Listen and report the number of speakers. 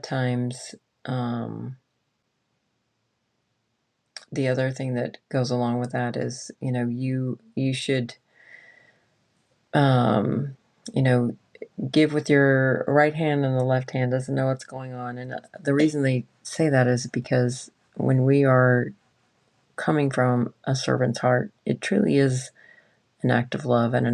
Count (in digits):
1